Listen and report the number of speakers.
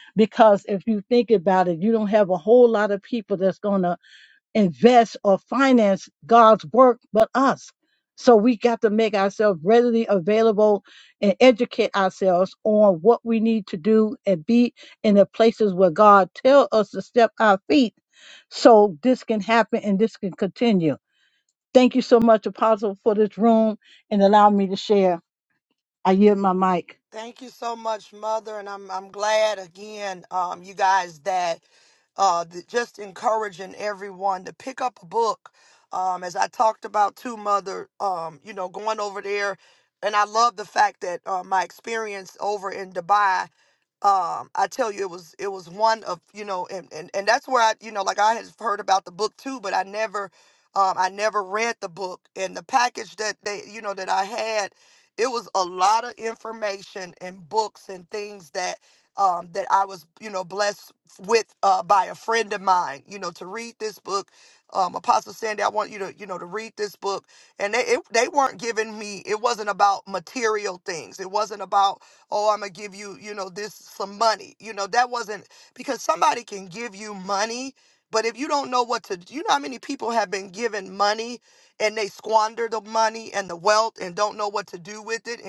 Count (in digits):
2